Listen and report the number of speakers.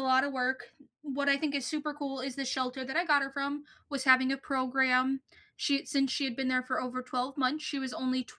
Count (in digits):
1